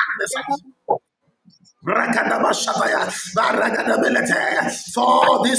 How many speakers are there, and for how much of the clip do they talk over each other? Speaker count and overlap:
one, no overlap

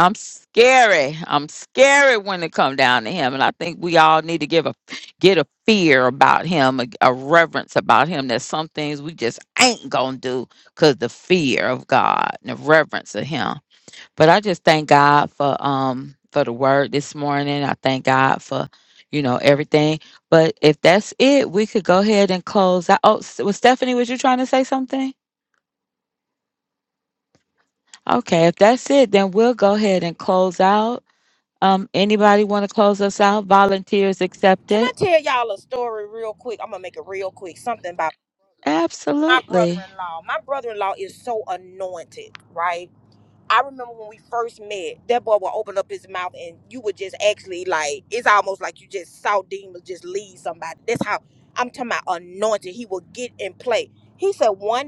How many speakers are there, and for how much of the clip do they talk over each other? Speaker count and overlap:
two, about 1%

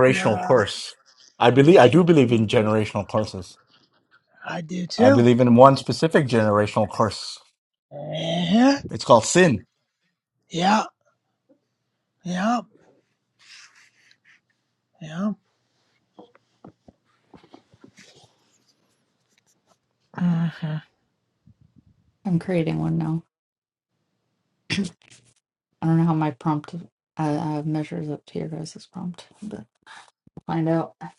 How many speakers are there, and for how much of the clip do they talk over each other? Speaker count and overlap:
three, about 3%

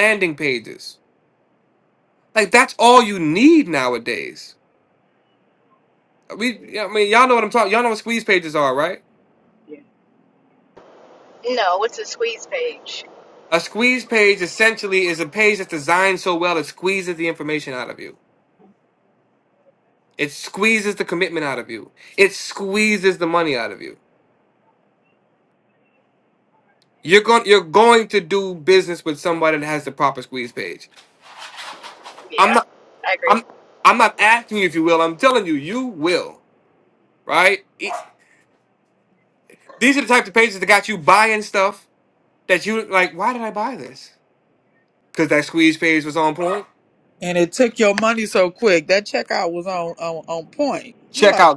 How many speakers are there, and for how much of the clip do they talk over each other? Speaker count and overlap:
three, about 1%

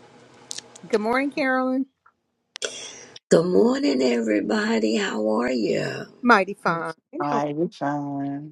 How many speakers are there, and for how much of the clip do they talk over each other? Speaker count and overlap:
three, about 3%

